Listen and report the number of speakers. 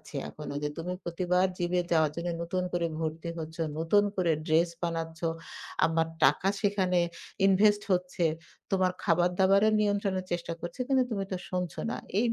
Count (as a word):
one